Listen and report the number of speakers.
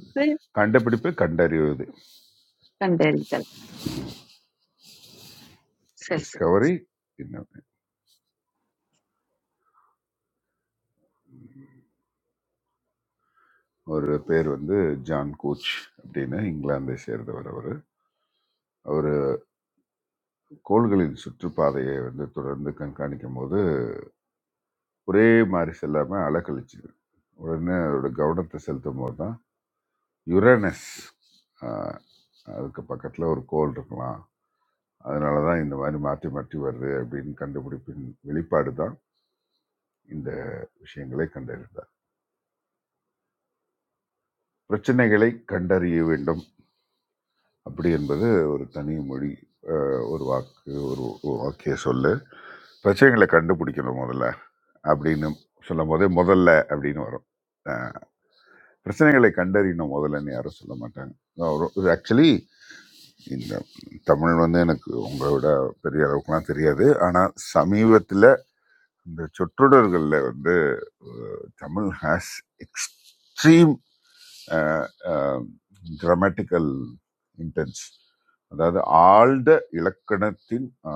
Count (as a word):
two